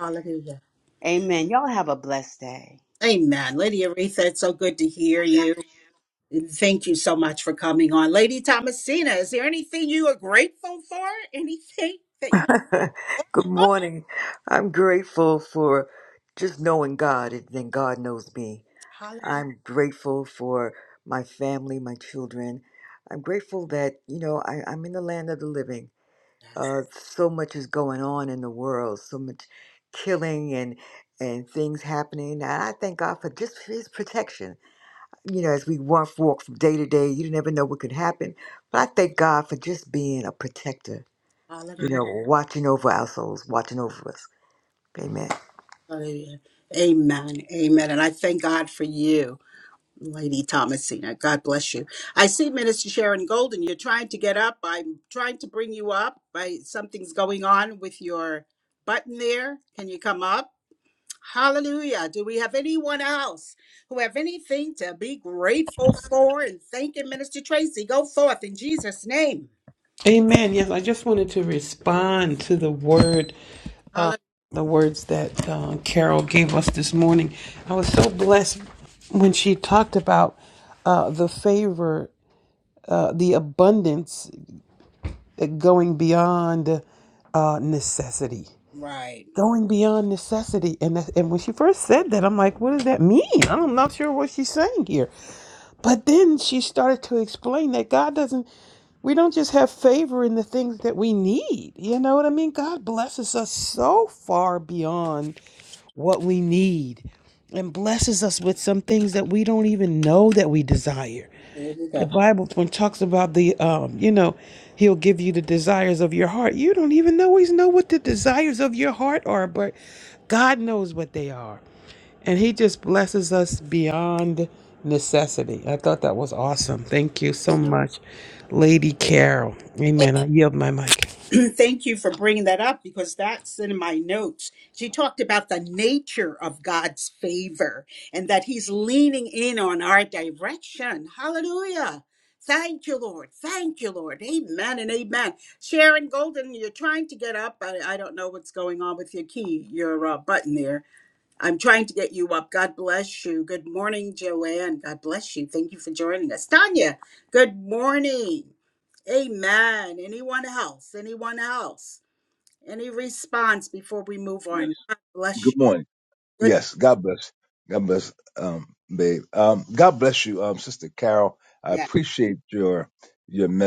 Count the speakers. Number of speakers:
five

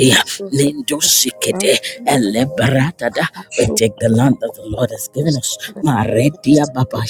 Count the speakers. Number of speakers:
two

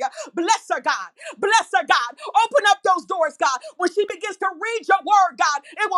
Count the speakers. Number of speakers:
one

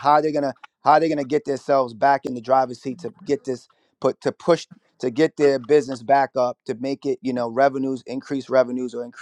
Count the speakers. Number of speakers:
one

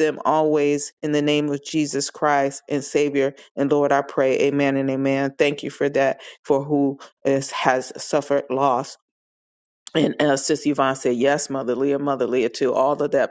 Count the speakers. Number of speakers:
one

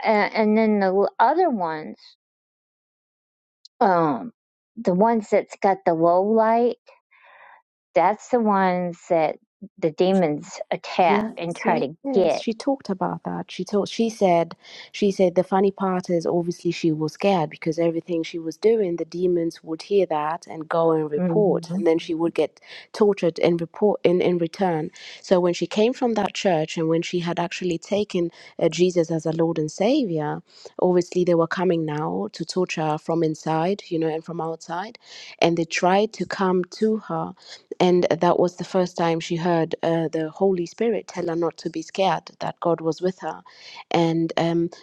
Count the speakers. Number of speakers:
two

